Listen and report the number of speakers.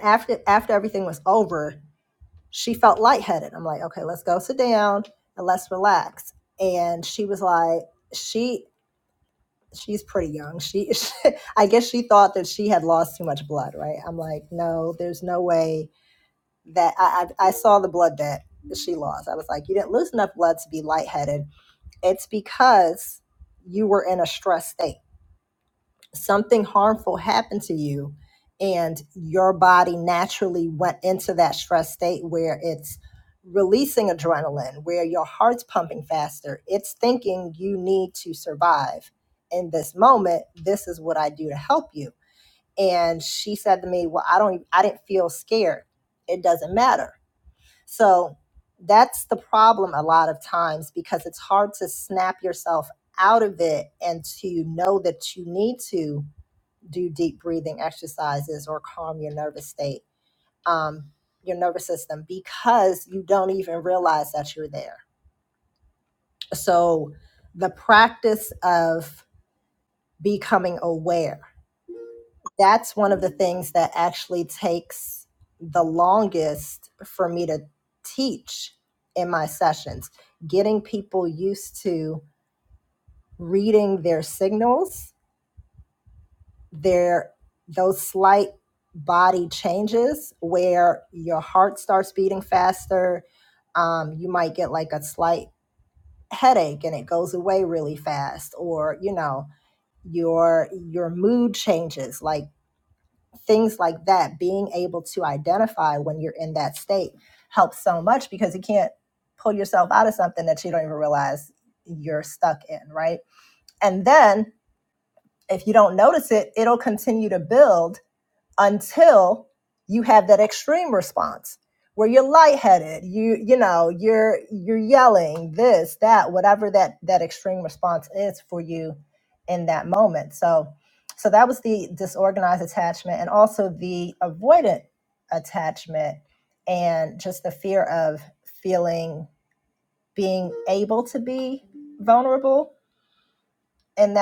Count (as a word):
one